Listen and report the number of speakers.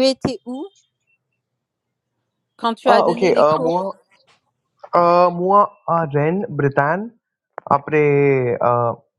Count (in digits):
2